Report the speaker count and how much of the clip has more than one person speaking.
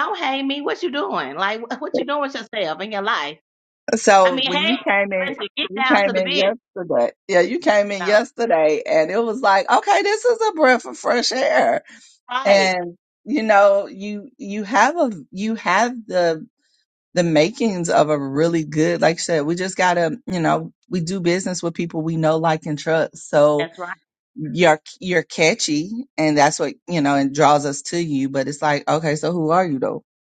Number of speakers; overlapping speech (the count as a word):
two, about 7%